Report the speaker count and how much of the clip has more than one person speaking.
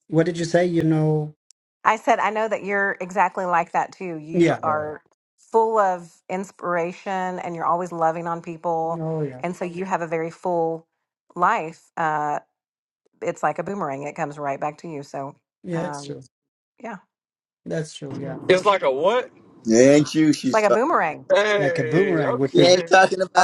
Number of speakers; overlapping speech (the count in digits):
4, about 12%